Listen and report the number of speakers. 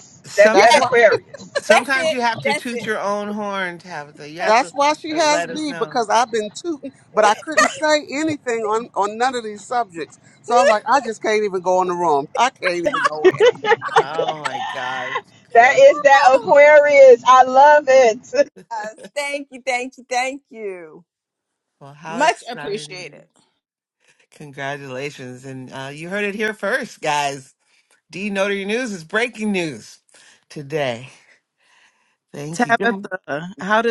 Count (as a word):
five